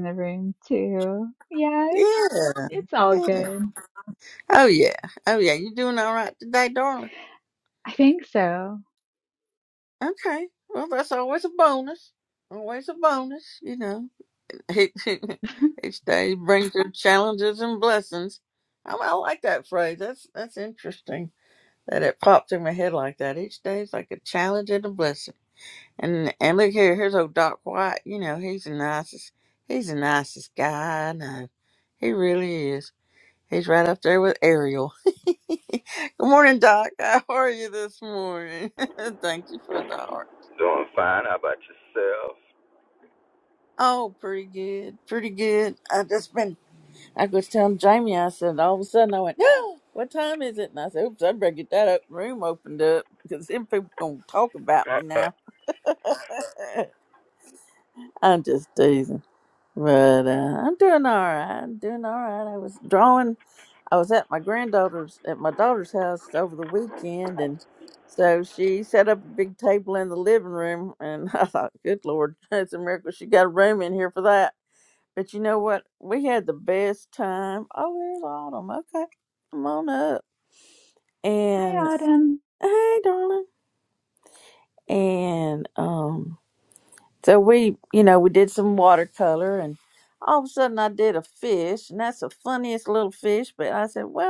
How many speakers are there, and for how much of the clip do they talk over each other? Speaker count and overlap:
3, about 1%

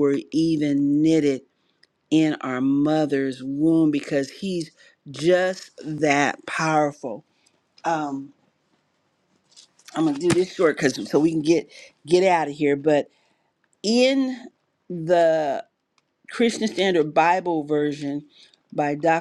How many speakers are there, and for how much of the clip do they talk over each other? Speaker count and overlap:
1, no overlap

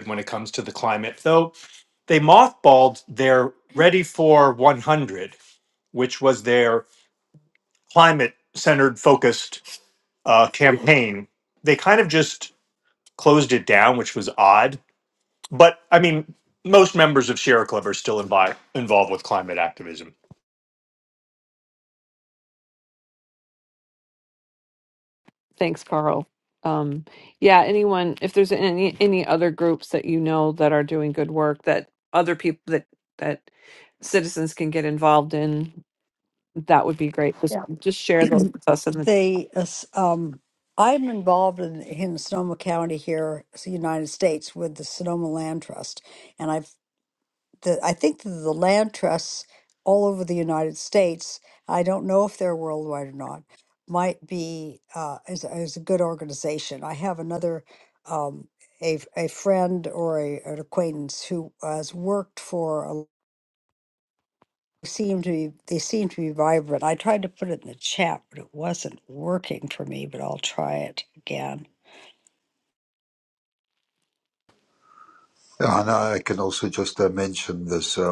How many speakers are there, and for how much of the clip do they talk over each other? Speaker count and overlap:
4, under 1%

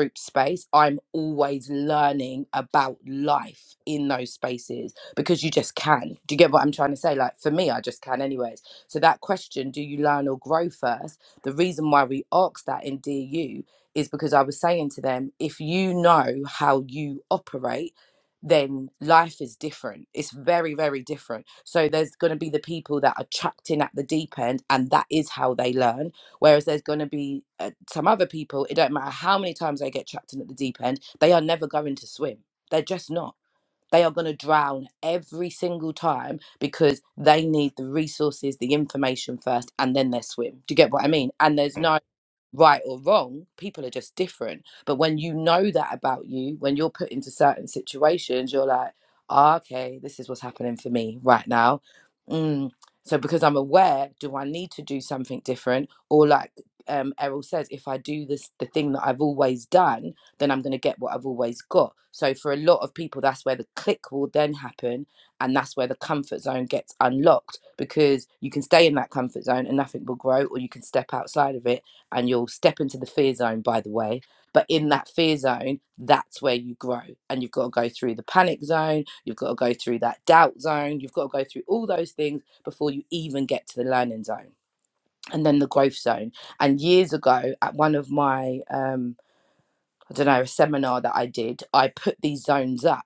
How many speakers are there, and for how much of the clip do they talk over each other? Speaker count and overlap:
1, no overlap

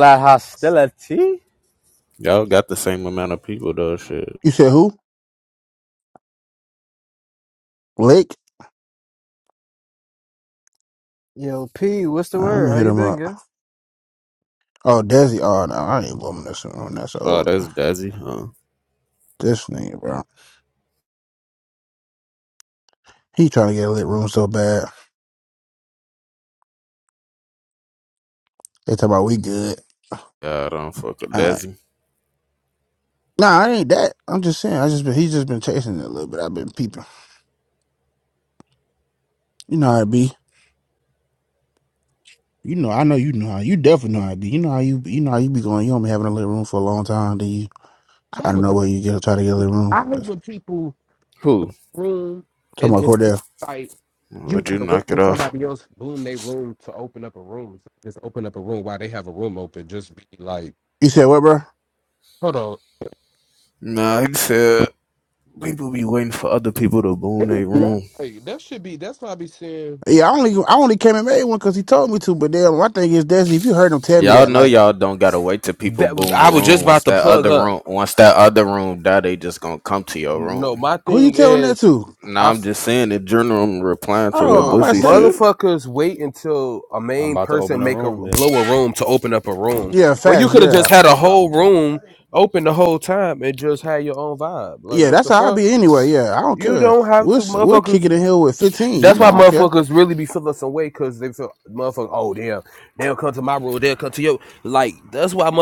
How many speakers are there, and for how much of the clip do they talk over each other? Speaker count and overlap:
5, about 13%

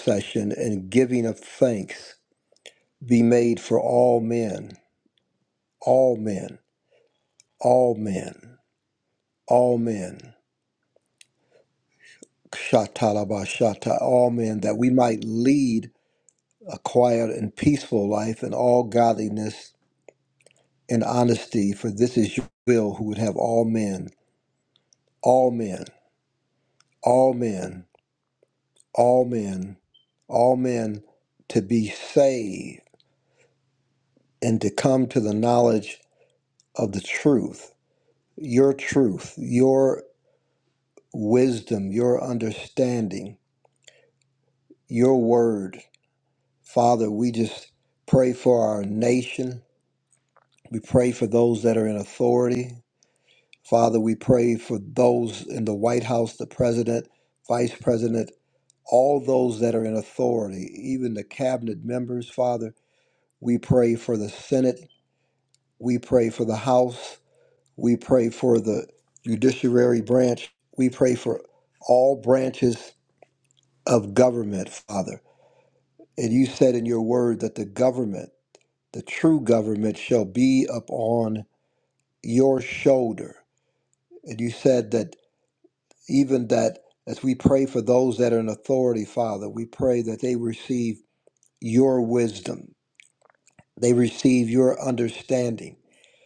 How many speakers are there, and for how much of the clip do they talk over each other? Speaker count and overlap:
1, no overlap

